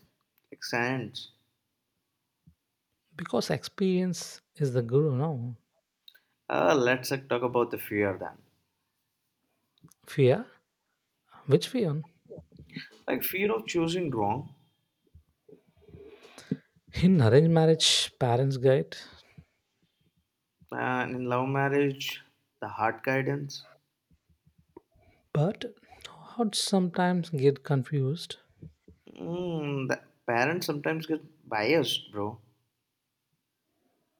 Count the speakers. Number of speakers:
2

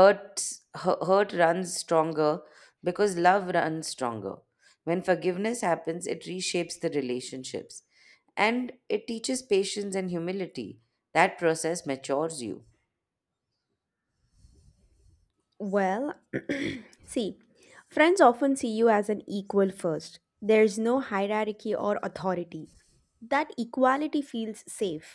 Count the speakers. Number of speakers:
2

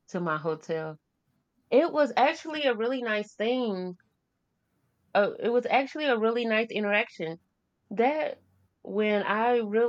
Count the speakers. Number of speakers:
1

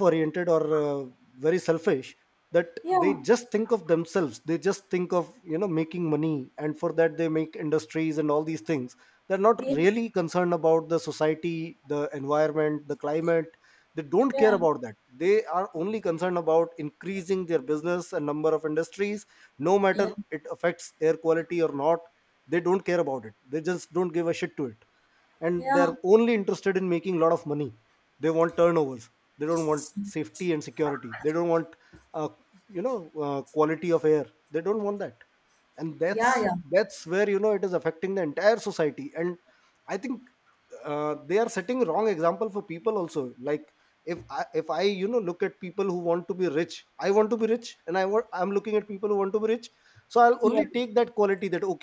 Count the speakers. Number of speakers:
2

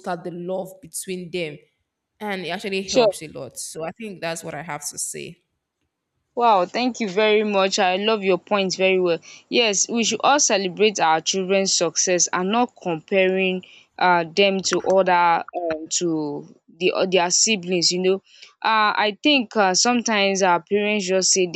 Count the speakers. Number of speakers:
2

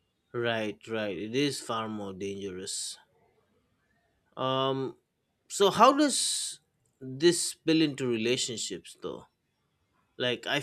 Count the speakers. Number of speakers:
1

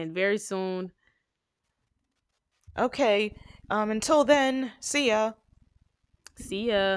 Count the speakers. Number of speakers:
2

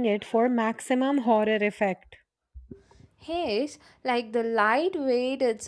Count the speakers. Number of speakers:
2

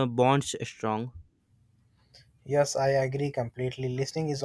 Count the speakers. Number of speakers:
2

